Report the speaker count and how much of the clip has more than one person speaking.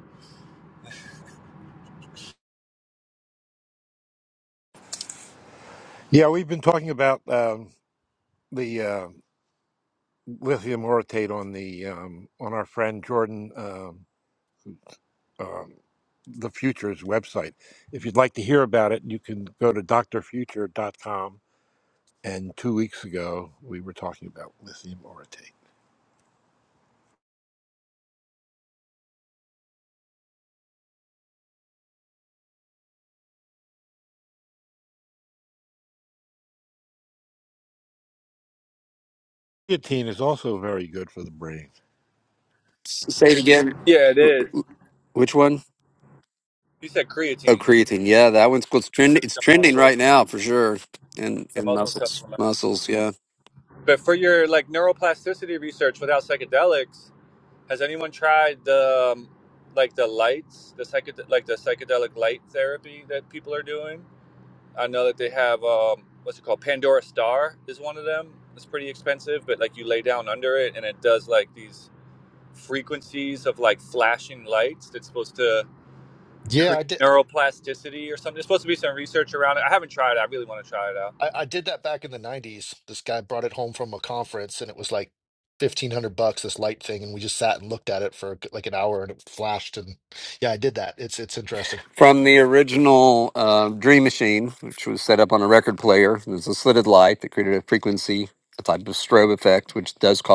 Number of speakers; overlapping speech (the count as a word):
four, about 2%